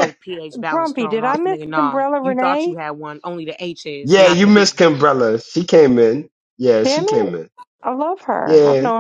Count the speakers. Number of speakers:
3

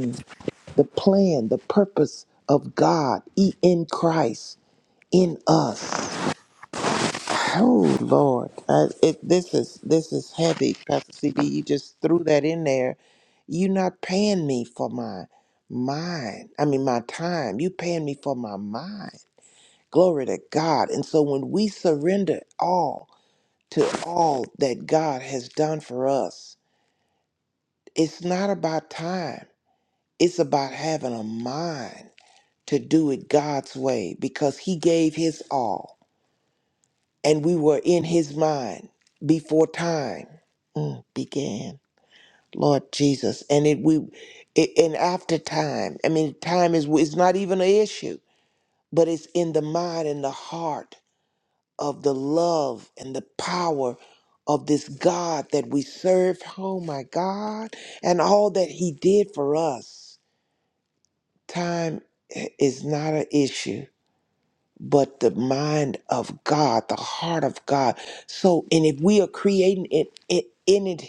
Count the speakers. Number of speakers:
1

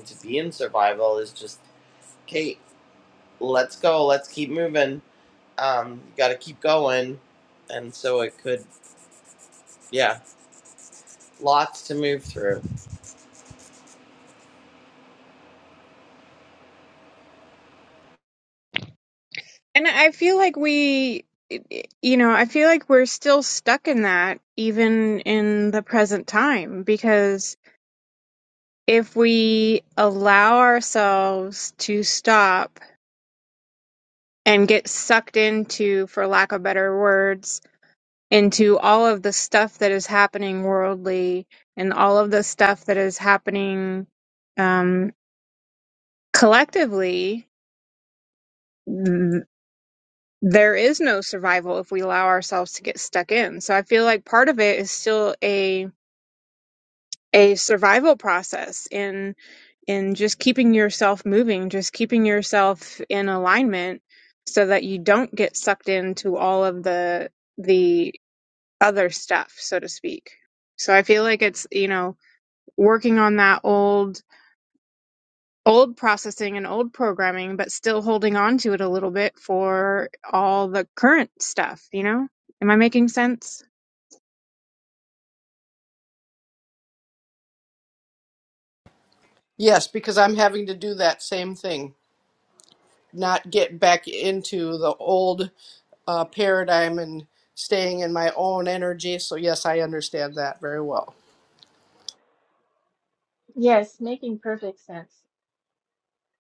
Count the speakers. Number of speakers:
4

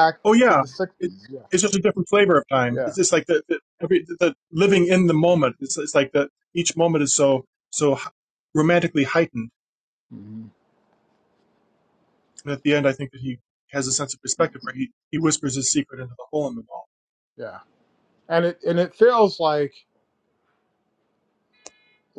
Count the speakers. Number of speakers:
2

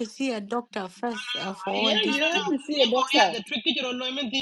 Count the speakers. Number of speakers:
3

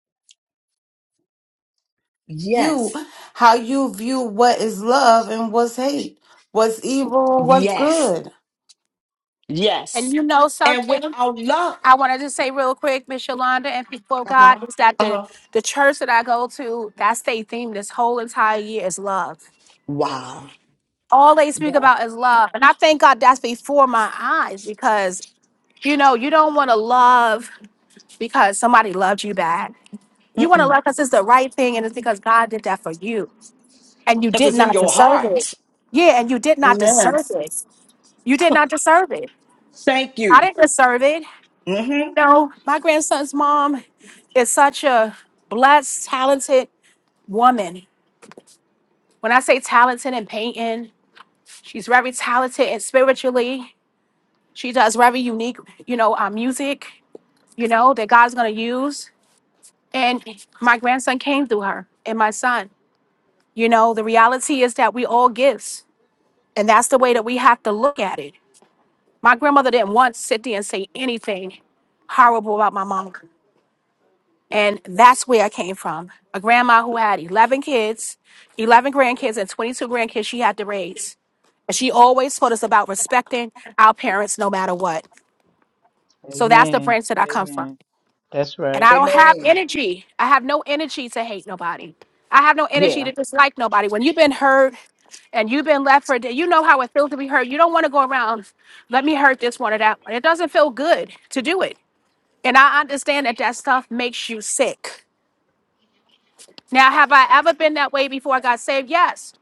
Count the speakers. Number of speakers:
4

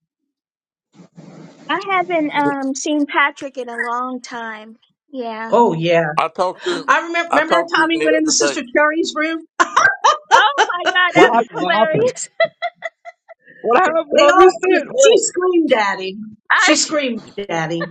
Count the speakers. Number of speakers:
4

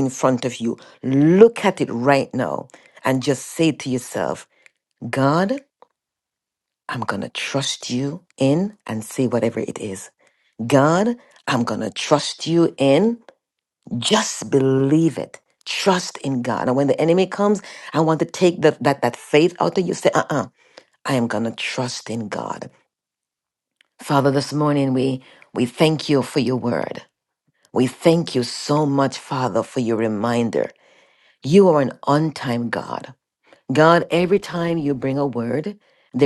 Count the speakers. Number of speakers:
1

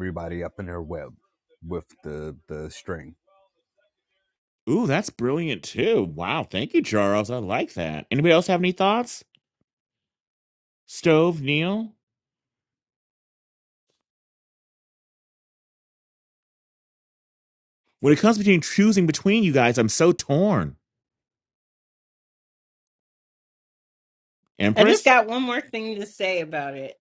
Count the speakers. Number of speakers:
3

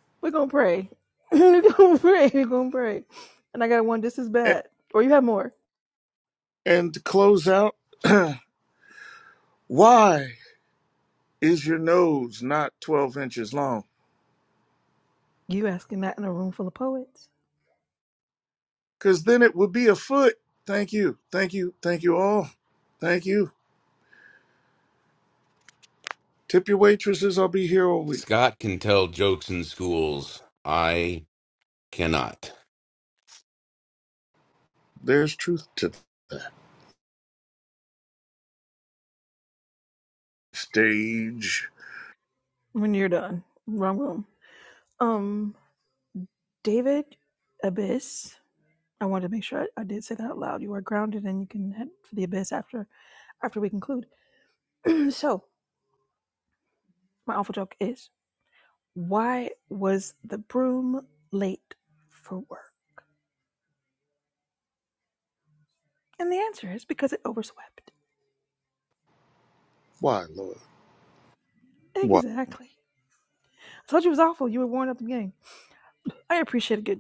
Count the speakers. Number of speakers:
3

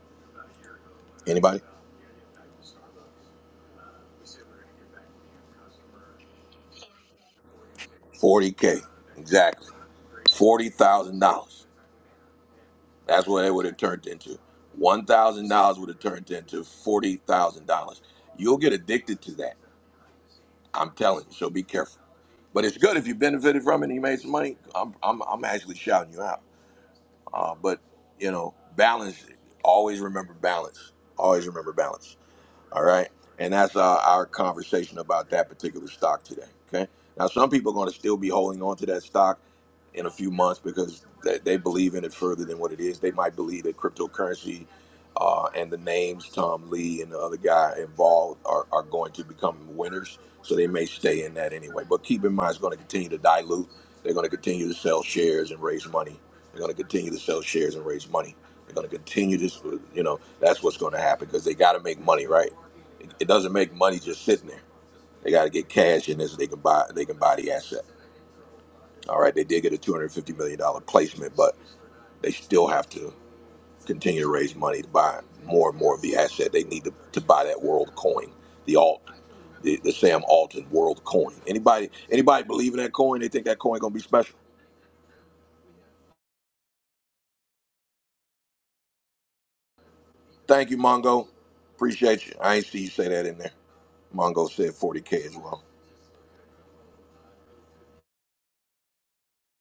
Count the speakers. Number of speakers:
1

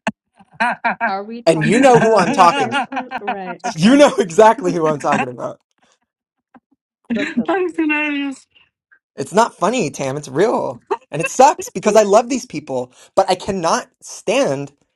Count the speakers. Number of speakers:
3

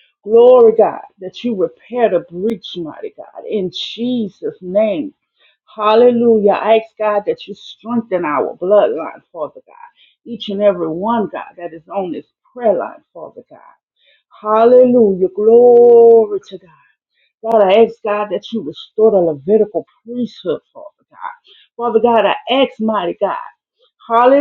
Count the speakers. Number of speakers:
1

